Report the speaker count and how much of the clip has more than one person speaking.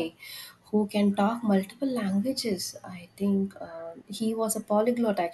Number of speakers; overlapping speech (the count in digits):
1, no overlap